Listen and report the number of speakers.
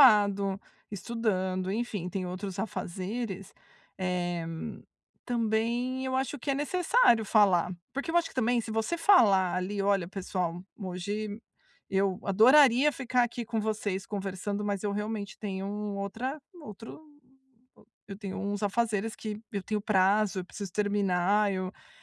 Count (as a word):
one